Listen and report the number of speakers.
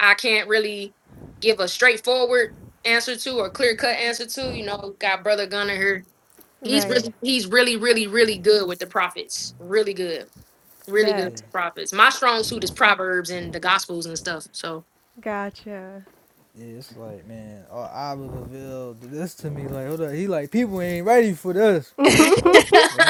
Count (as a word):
three